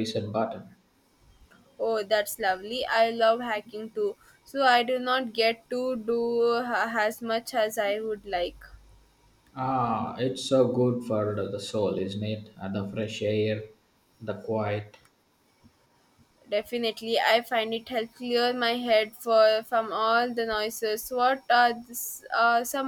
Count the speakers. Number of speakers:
2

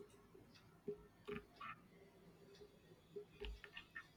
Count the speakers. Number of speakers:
0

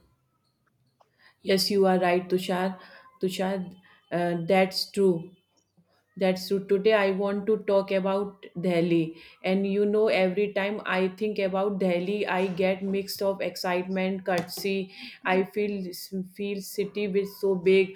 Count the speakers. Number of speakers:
1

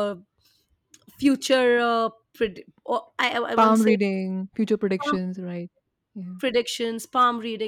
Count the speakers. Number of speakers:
2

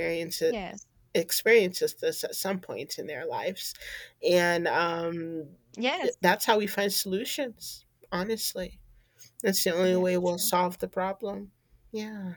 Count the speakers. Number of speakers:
2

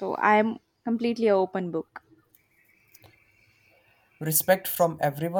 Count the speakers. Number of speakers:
2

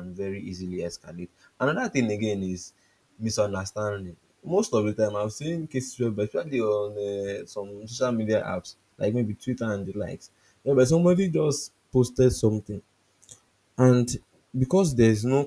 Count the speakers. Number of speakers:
1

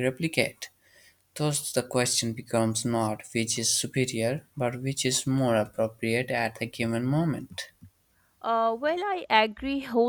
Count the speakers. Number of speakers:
2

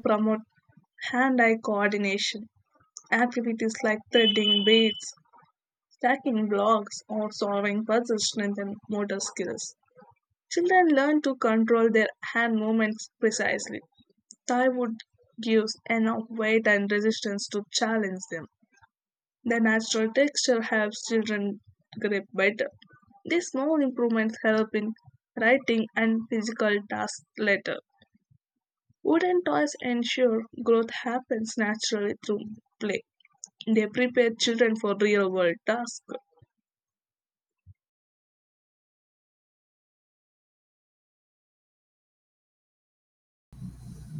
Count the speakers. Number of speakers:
1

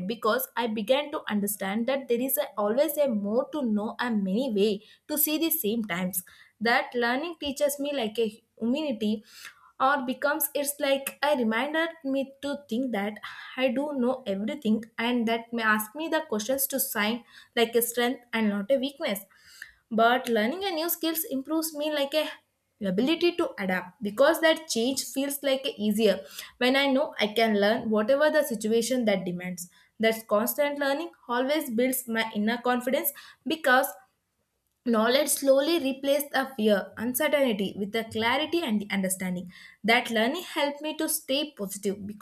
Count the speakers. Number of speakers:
1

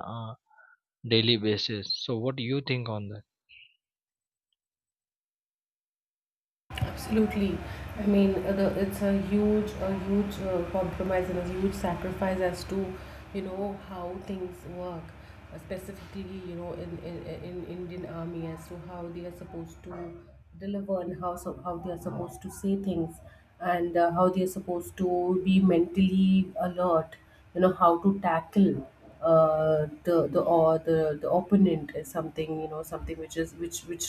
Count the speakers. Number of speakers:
2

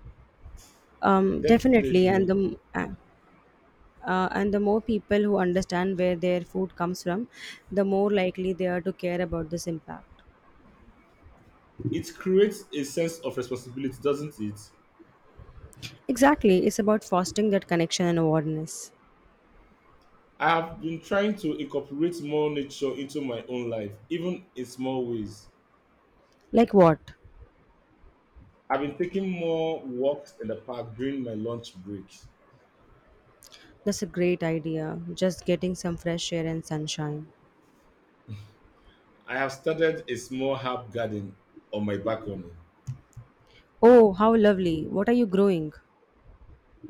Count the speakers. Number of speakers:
2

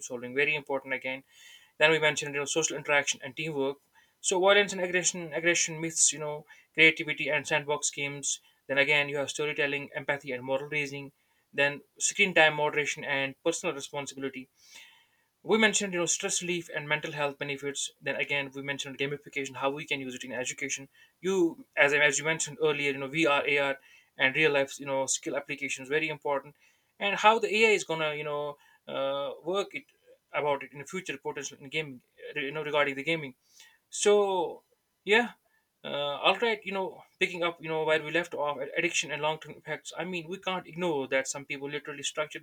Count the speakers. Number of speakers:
1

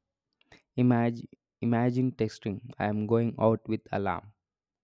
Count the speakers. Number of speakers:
1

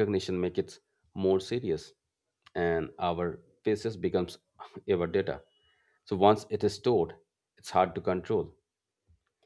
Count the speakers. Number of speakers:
1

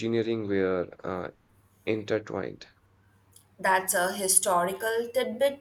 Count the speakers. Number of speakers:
2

